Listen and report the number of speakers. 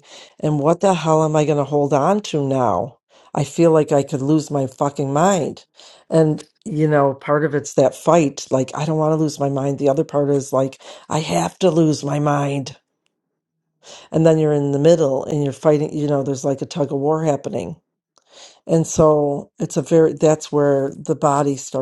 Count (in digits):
1